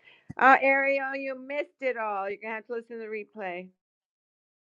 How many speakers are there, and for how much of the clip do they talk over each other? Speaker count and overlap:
one, no overlap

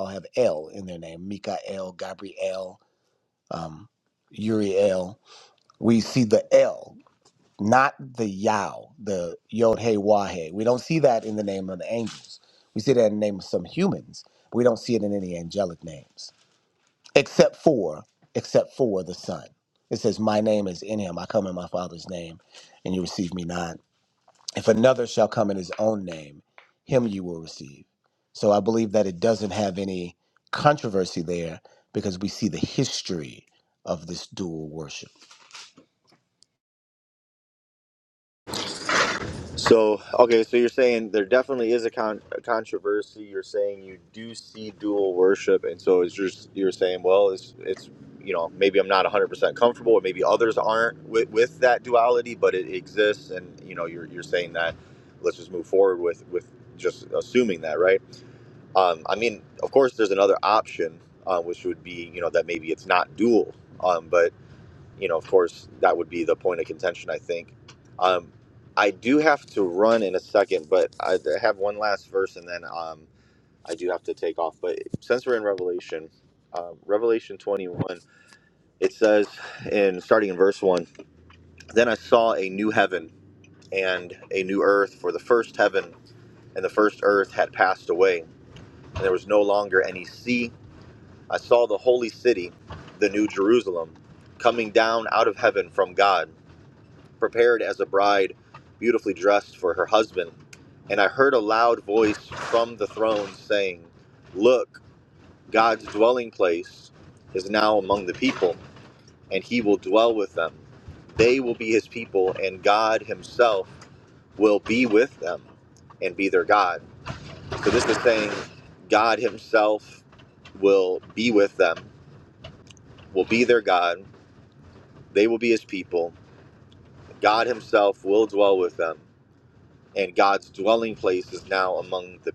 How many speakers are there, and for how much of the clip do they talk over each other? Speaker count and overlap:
two, no overlap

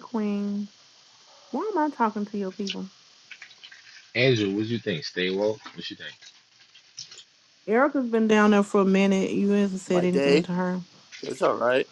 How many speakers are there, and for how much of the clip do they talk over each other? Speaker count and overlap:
three, about 5%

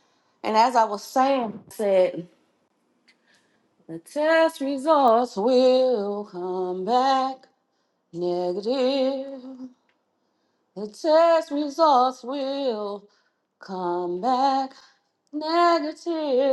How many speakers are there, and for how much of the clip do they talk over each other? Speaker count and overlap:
one, no overlap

